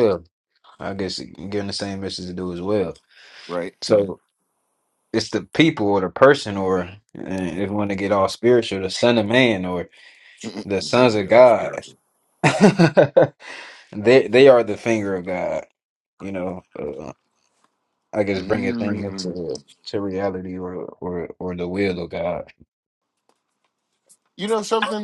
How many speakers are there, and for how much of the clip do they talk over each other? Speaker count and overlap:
2, about 7%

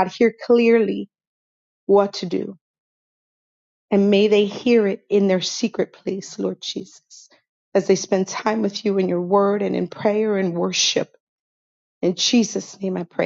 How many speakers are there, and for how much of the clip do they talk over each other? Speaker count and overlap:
1, no overlap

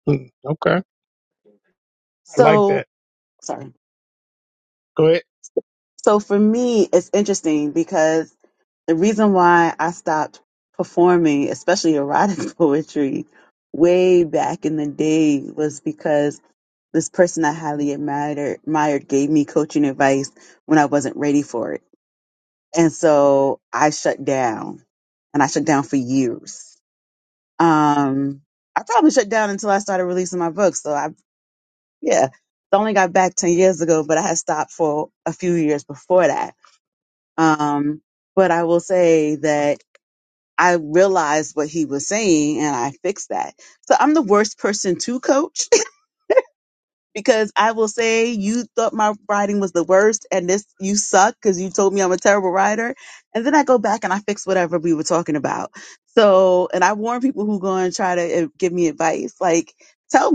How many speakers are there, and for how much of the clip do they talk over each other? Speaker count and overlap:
2, about 1%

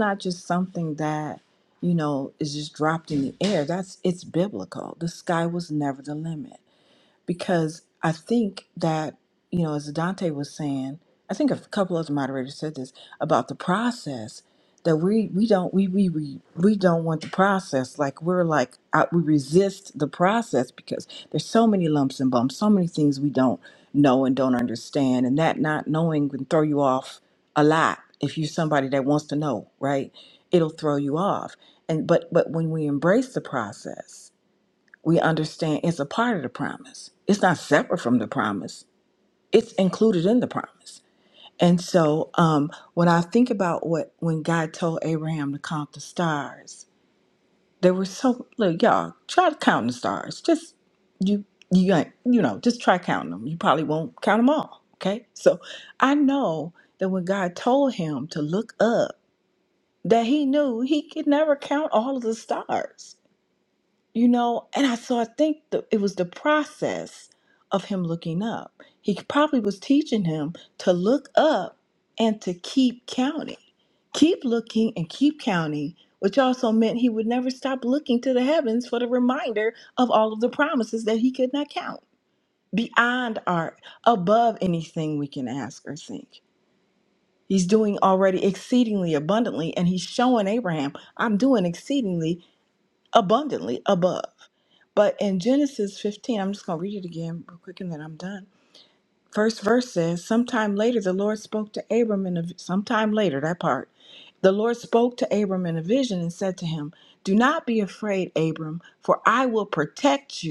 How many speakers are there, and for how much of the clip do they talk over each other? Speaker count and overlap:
1, no overlap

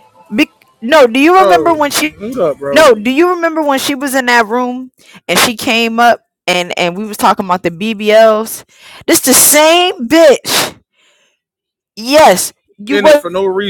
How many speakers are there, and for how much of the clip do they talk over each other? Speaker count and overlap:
2, about 6%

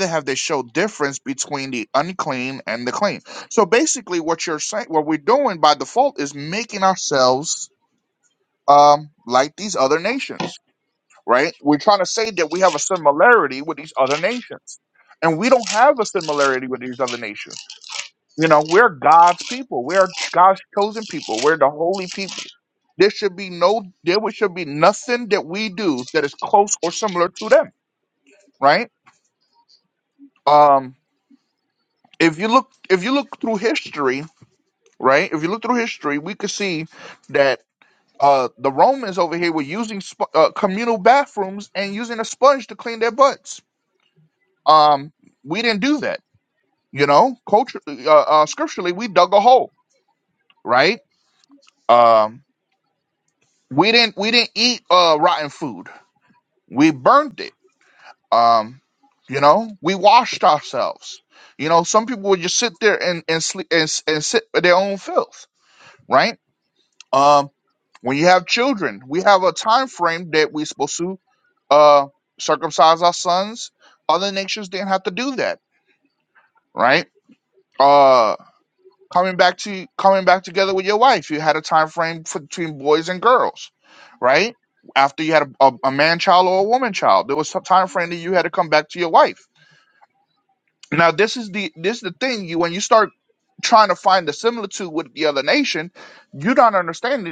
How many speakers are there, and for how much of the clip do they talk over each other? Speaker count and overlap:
1, no overlap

